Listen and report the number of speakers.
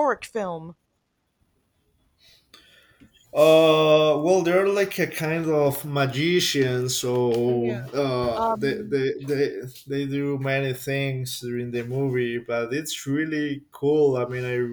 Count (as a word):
two